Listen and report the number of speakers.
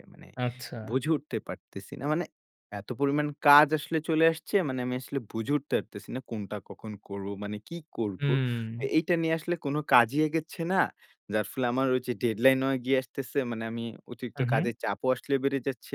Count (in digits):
2